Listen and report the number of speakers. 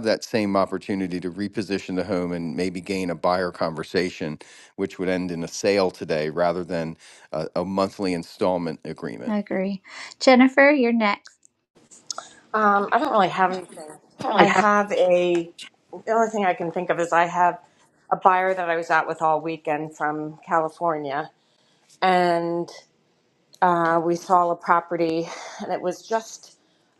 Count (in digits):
3